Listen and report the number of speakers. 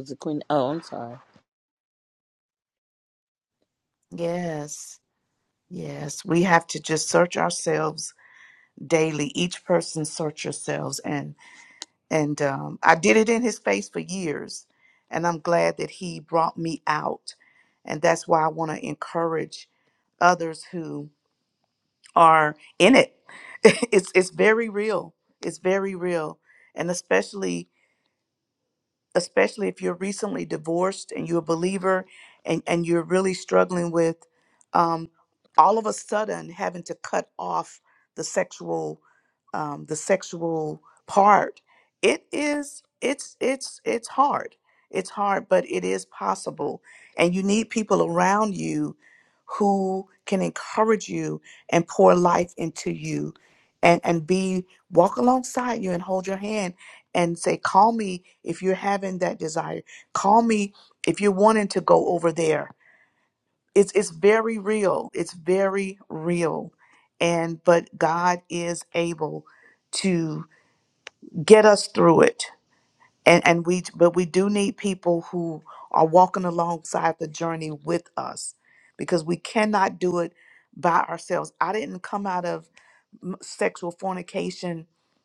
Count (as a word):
two